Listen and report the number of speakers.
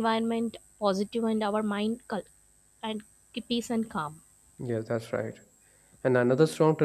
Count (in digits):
2